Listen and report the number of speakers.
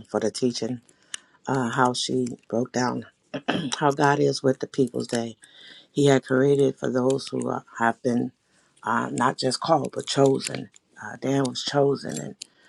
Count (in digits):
1